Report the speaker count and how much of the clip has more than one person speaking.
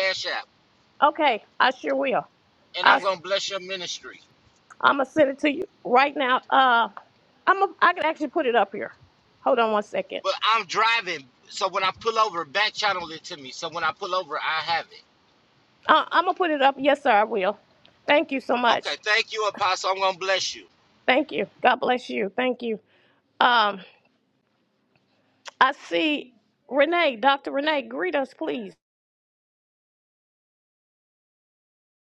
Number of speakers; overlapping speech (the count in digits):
2, about 1%